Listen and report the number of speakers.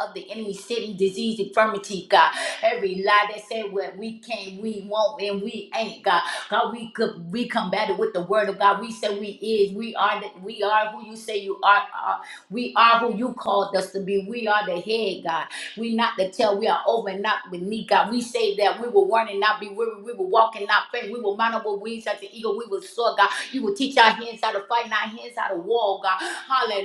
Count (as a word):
one